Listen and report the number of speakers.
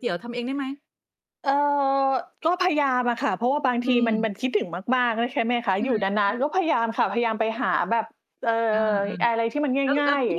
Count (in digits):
2